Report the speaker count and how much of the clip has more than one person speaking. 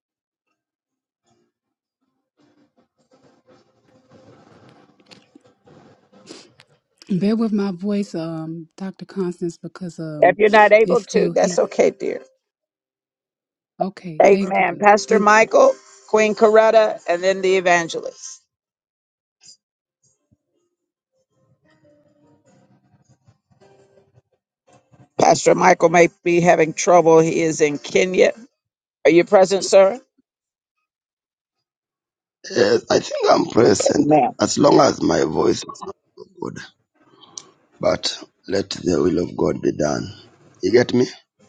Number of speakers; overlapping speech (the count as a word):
three, about 4%